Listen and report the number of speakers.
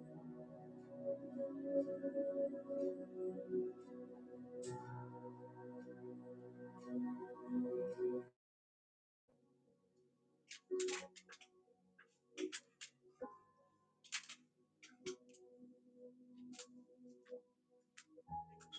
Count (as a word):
zero